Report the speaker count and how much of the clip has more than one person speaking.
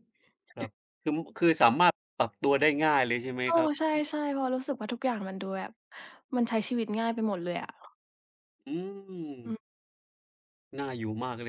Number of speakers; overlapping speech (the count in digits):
2, about 5%